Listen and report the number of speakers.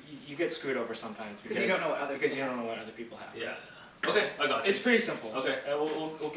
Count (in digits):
3